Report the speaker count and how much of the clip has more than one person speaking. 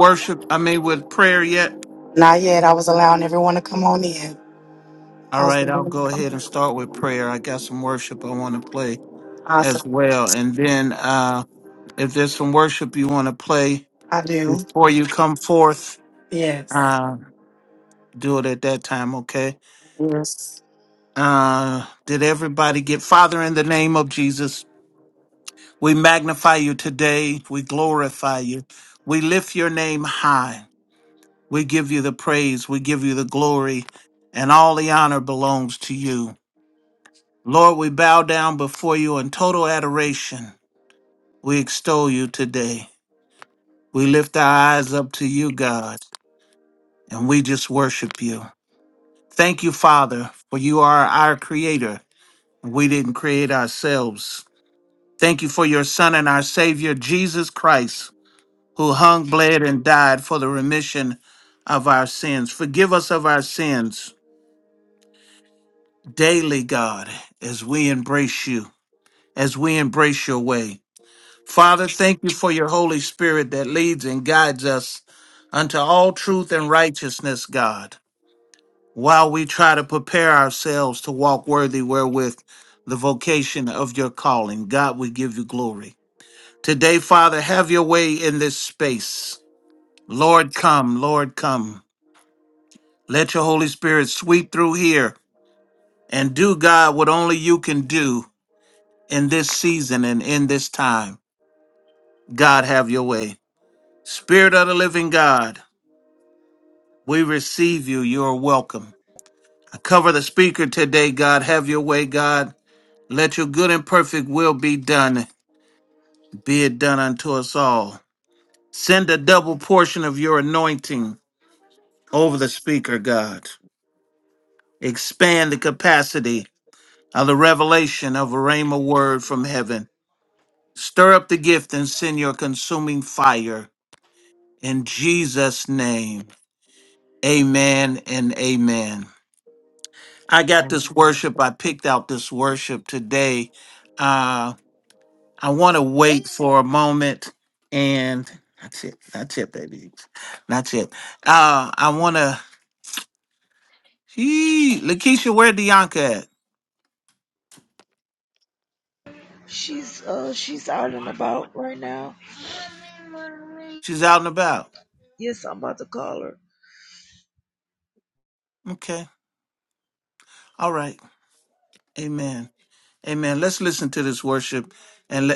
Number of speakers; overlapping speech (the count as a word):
three, under 1%